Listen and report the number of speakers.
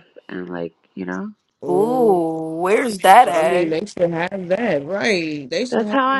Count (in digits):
3